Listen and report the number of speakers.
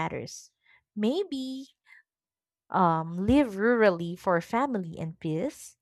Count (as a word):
one